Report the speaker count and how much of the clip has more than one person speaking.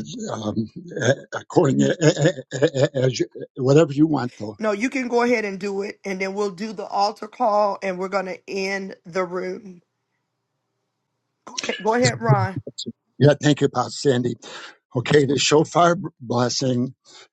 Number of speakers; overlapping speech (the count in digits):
2, no overlap